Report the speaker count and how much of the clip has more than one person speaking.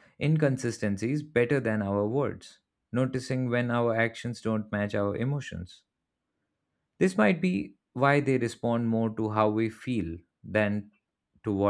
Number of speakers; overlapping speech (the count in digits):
1, no overlap